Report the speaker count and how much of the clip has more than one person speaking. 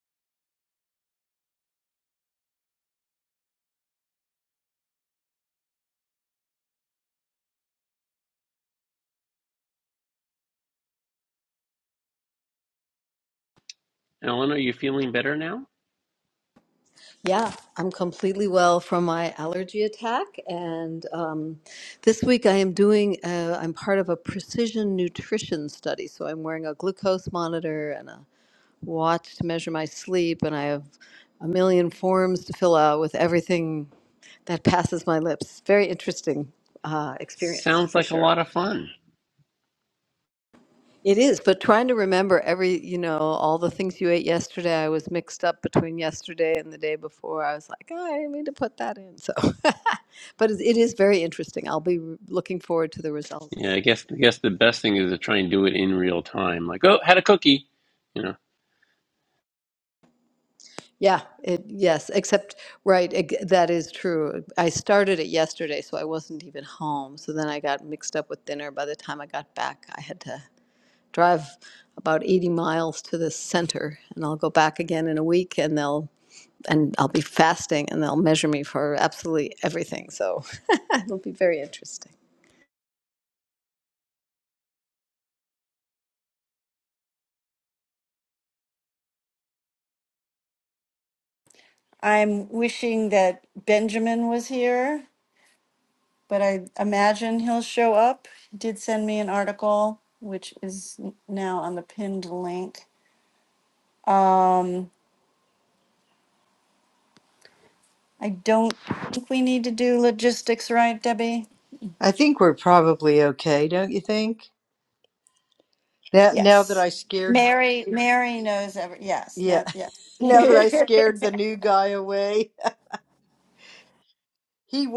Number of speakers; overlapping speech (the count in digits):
4, about 1%